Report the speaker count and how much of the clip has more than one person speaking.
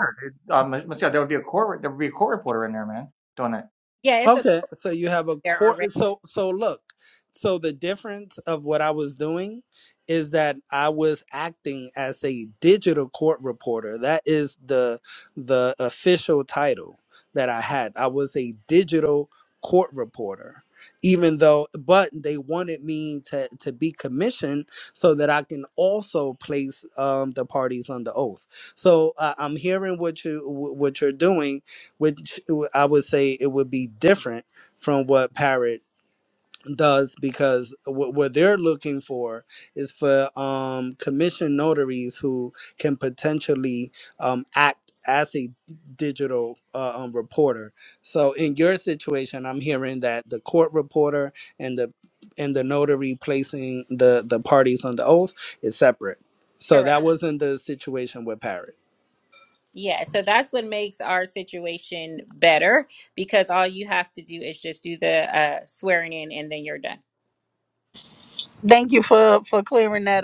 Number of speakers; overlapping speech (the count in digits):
4, about 1%